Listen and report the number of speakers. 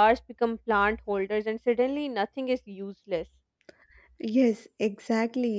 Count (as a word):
two